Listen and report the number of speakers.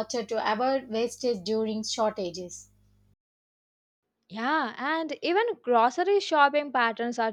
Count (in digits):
2